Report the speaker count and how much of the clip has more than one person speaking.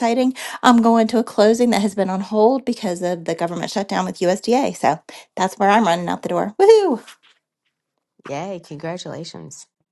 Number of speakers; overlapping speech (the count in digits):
2, no overlap